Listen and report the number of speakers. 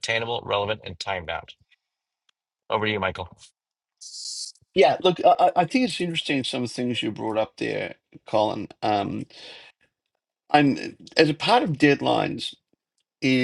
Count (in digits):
2